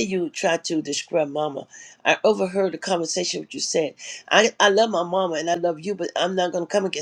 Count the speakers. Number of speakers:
1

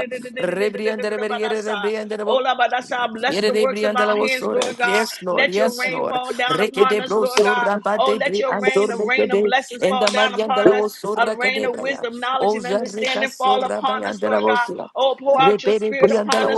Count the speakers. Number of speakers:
2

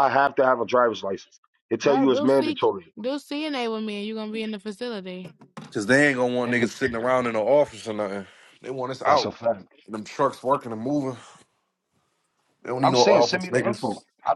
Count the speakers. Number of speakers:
3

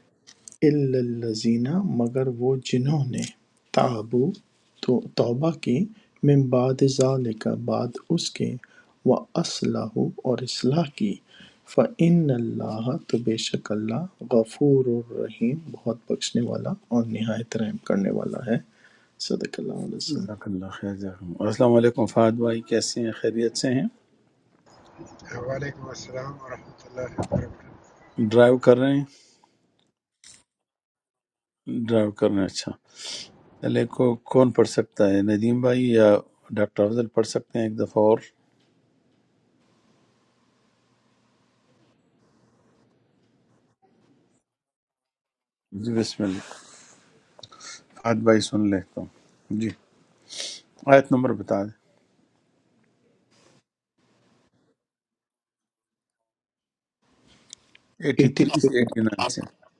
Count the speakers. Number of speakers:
3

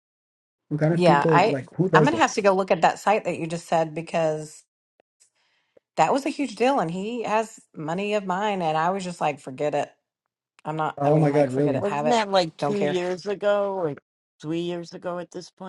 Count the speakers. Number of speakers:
3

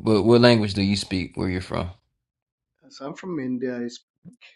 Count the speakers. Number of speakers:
2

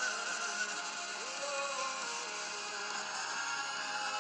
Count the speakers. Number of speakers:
0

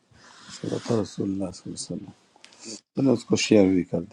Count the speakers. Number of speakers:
1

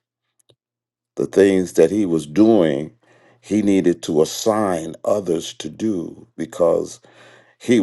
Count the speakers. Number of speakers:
1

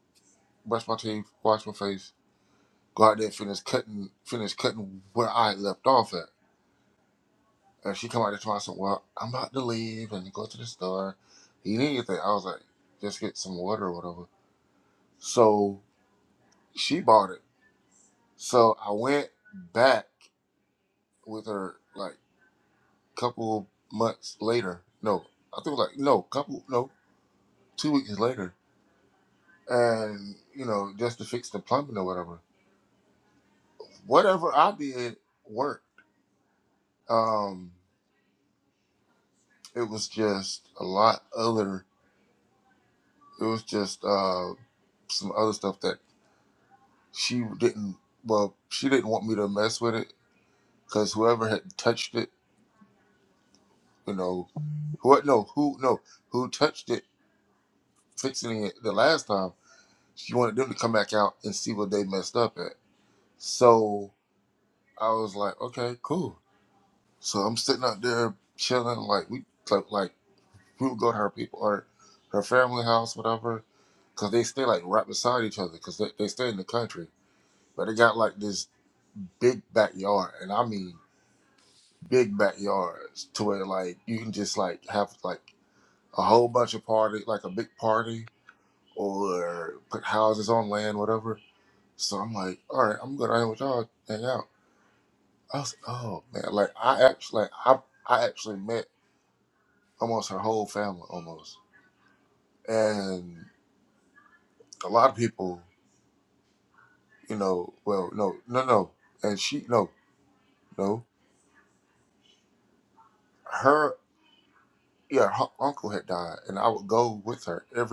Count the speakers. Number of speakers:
1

